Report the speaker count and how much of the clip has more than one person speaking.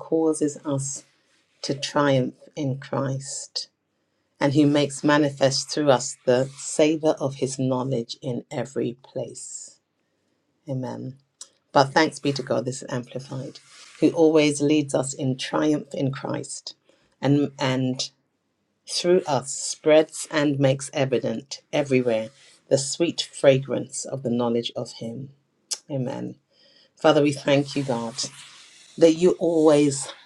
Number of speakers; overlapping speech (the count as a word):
one, no overlap